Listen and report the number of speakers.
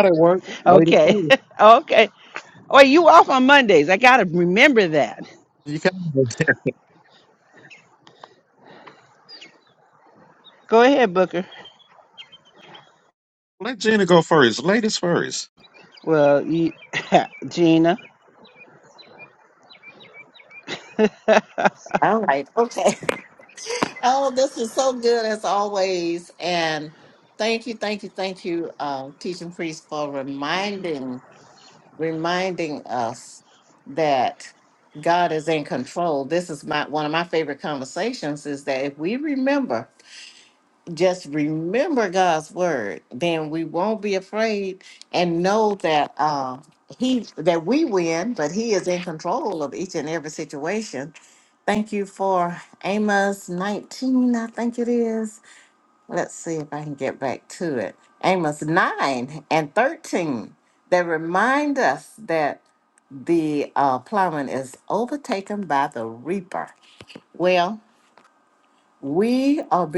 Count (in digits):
3